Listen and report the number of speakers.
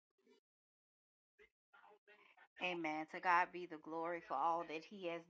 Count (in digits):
1